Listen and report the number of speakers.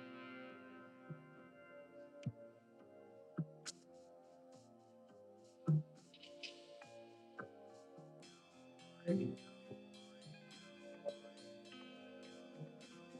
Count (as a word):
zero